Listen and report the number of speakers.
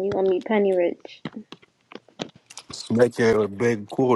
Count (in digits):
2